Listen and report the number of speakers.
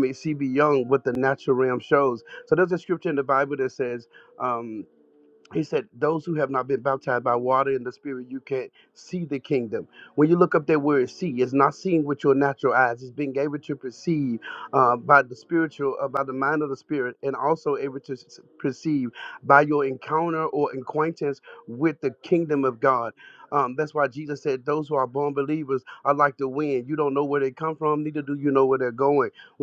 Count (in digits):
1